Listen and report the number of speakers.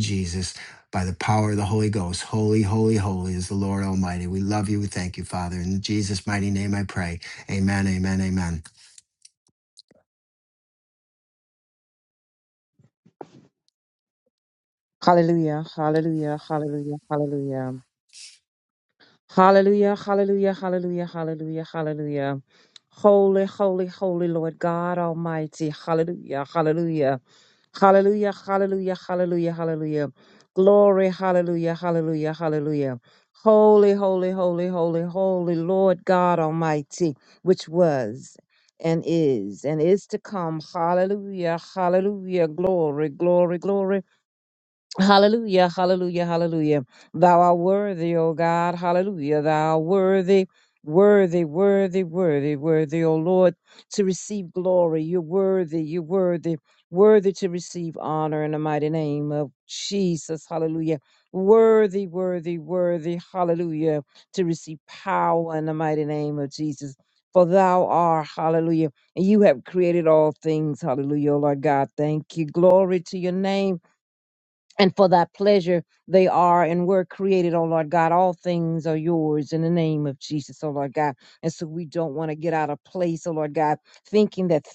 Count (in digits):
2